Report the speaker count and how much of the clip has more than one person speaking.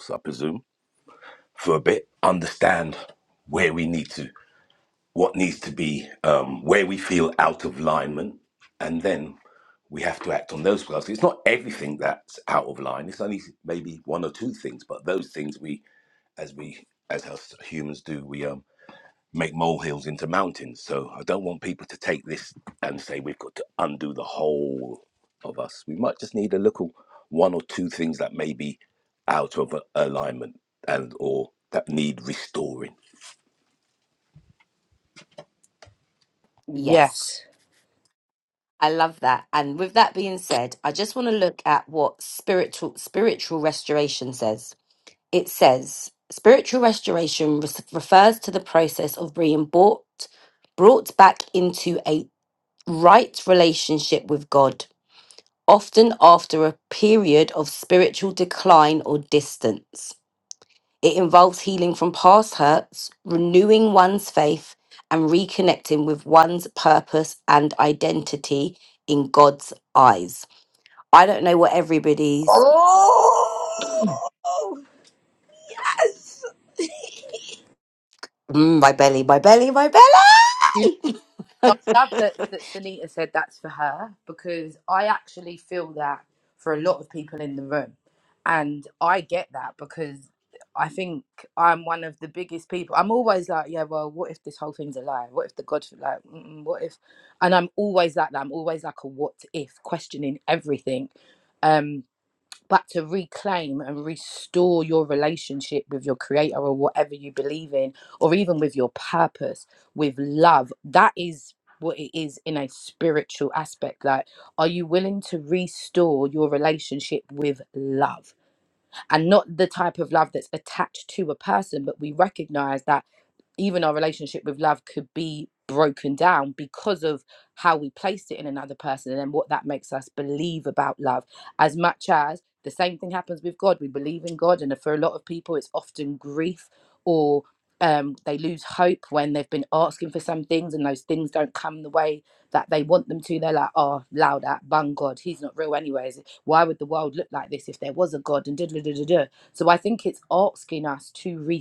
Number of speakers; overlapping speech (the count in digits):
3, under 1%